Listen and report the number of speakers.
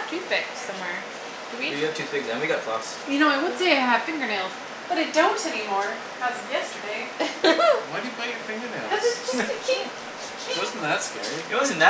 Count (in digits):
4